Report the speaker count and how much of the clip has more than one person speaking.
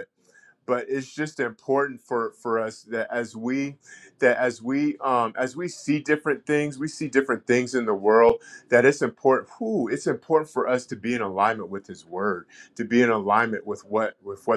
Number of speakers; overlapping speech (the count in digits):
1, no overlap